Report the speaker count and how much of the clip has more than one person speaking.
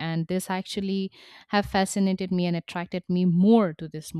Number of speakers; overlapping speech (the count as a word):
one, no overlap